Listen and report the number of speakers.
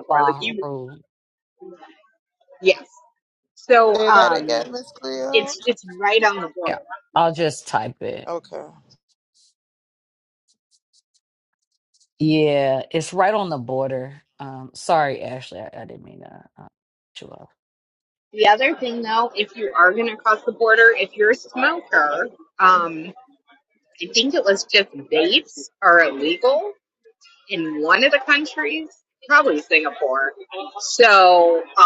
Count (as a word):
three